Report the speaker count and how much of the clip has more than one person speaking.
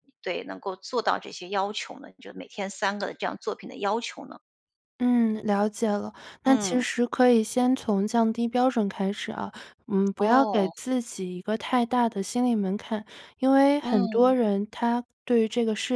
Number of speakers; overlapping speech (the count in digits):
2, about 9%